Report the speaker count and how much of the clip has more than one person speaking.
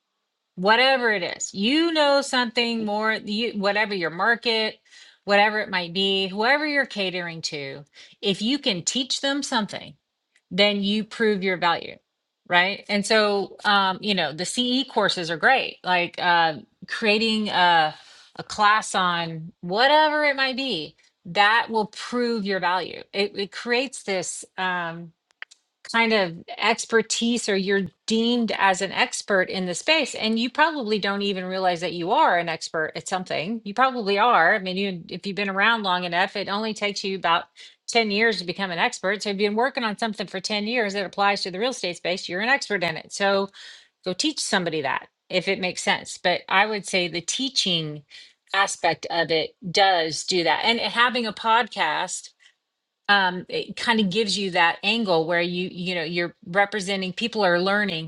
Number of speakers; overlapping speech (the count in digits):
1, no overlap